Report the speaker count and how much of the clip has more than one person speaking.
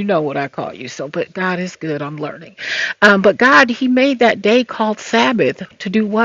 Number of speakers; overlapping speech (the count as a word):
one, no overlap